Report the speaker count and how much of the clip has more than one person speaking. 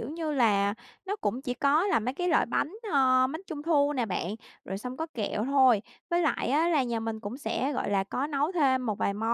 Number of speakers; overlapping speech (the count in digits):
1, no overlap